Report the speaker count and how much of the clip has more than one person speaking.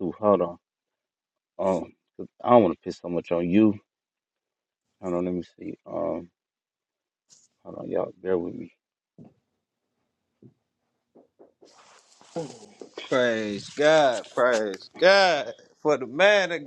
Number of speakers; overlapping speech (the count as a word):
two, no overlap